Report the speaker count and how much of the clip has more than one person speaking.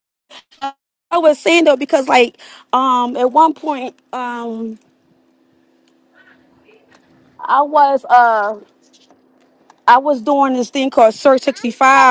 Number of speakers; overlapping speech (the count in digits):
1, no overlap